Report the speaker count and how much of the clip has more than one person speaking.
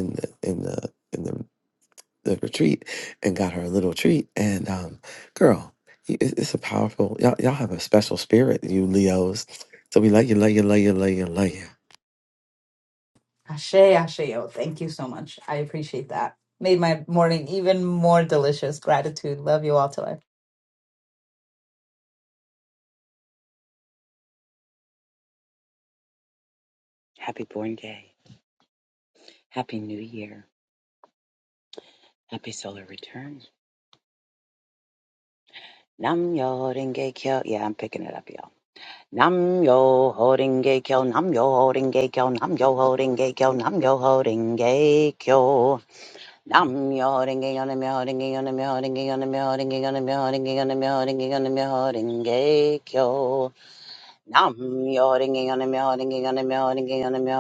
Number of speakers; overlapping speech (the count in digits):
3, no overlap